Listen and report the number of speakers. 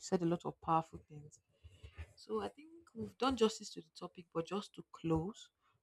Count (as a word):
one